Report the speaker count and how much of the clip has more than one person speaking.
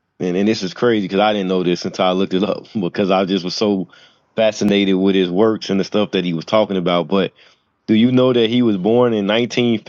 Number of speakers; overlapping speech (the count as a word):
one, no overlap